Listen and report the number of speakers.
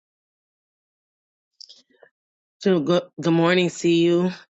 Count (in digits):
1